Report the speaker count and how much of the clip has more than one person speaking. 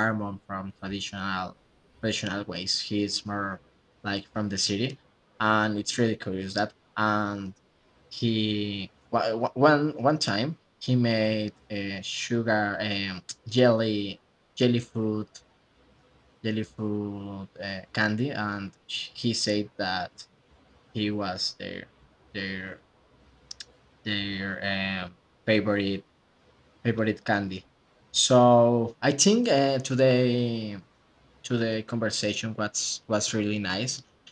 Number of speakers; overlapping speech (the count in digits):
1, no overlap